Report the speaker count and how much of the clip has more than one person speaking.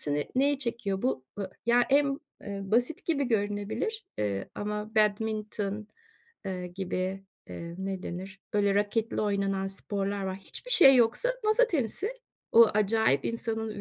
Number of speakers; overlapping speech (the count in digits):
1, no overlap